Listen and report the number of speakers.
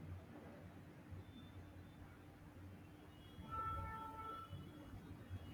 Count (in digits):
0